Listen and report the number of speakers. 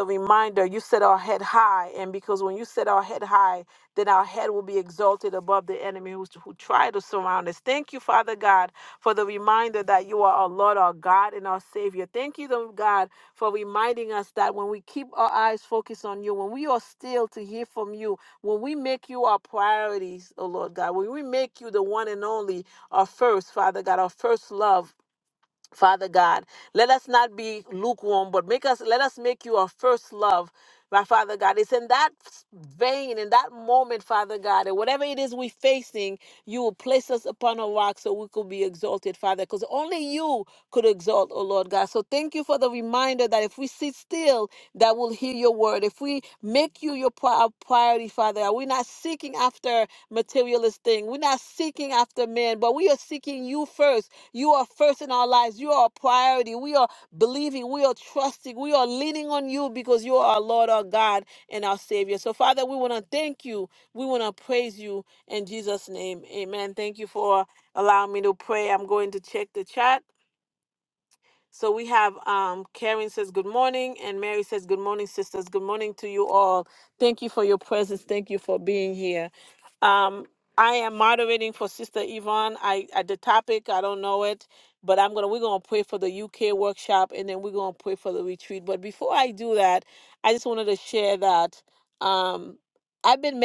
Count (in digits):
1